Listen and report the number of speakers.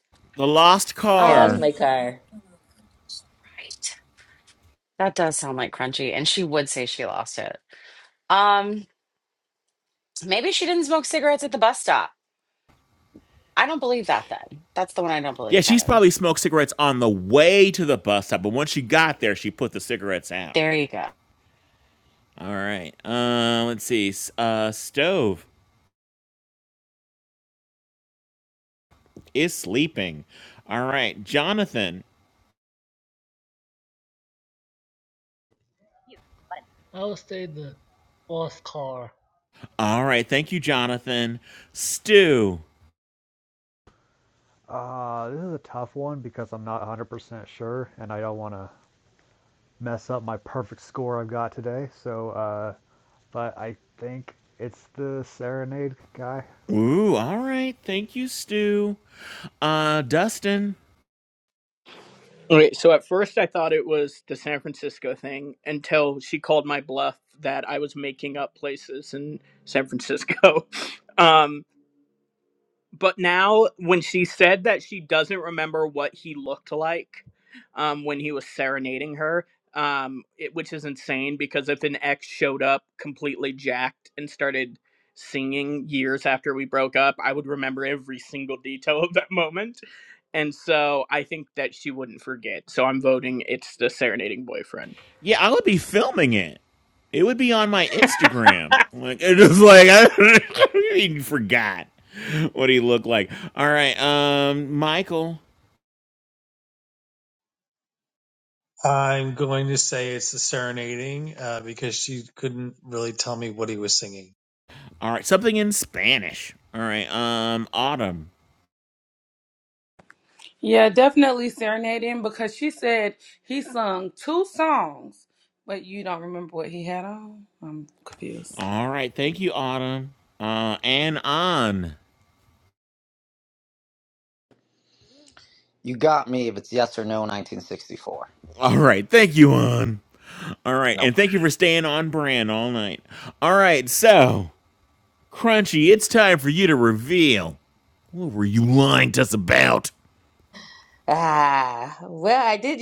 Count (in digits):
9